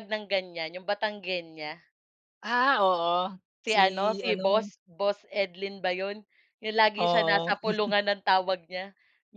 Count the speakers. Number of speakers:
2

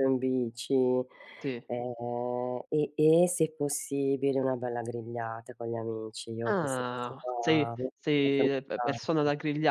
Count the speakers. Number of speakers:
2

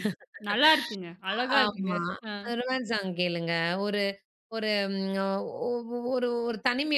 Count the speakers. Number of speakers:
2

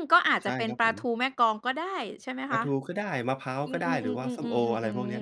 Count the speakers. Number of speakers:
2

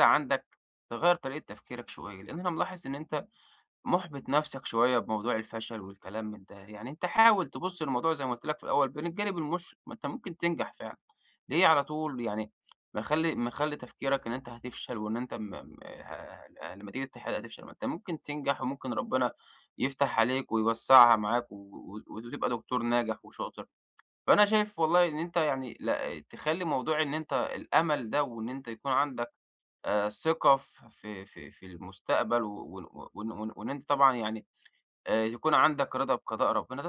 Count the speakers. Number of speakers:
1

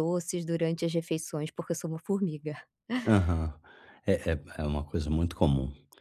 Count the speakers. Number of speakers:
2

